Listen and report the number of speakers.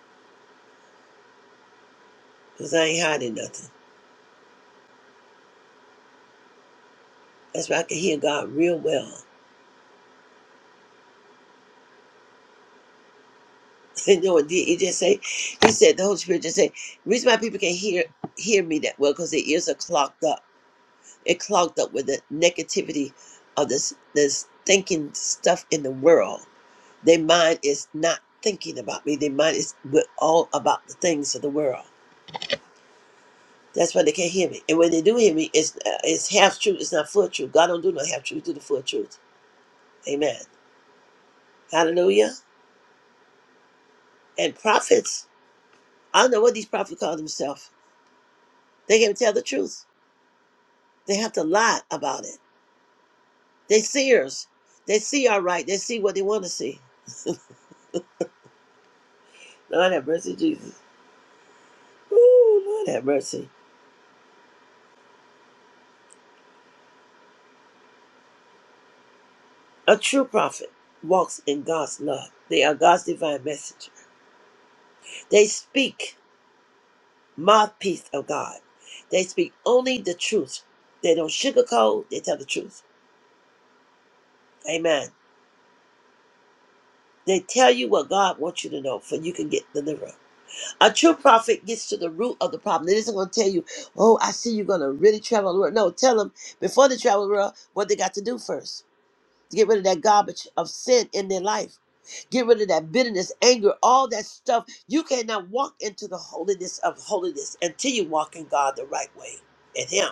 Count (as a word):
one